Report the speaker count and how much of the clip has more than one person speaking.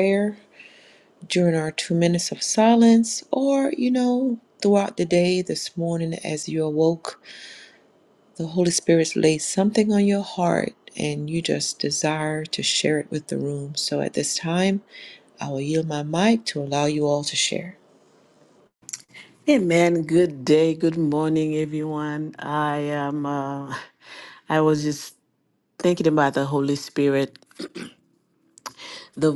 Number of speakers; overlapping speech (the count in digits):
2, no overlap